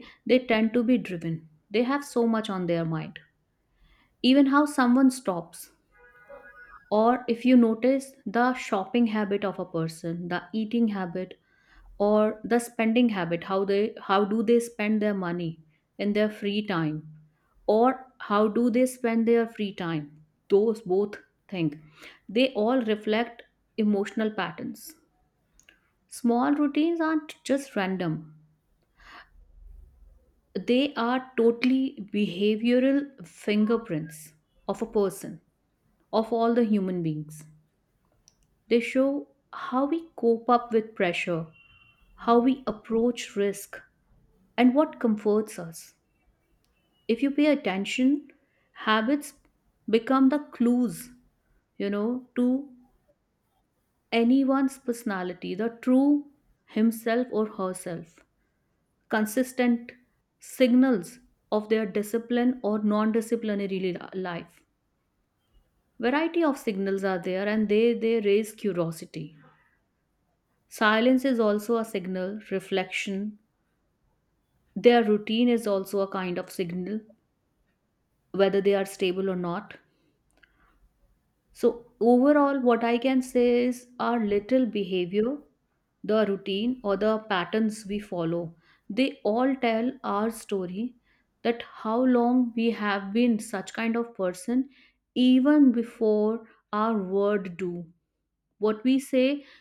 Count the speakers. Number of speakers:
one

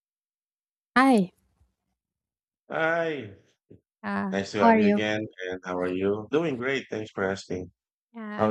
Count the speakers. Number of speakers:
two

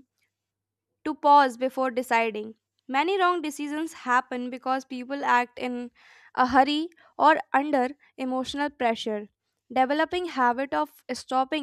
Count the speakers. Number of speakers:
one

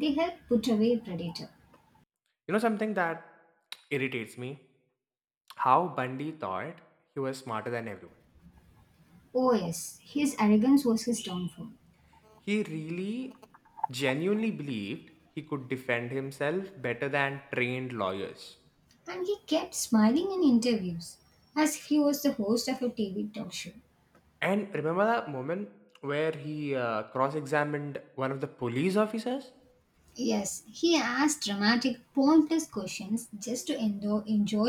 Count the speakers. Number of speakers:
two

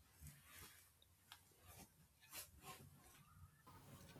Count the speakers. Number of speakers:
zero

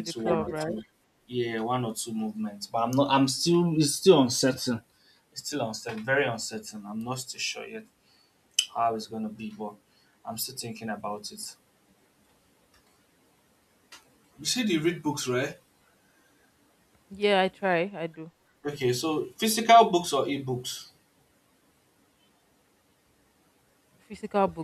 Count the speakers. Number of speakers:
two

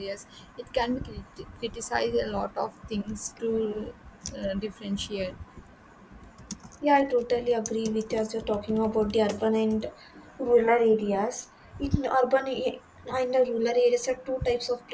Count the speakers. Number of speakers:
two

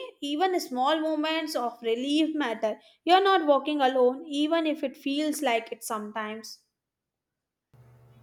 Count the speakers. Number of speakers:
one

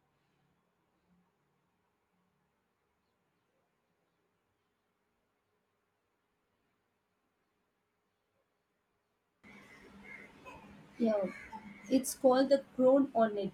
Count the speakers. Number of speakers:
one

